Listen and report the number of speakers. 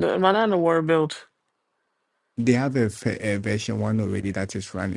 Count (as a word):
two